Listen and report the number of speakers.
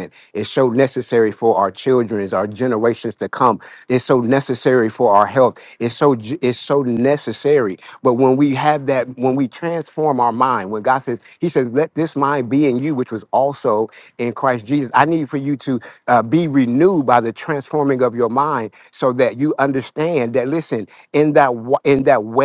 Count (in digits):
1